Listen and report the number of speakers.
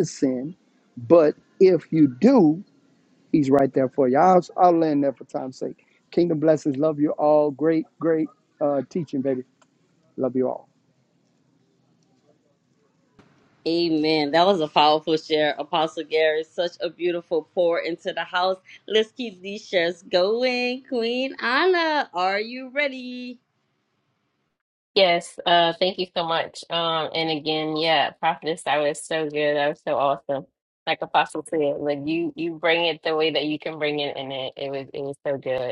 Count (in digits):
3